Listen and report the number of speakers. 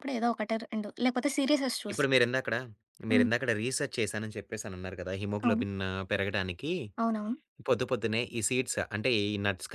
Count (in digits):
2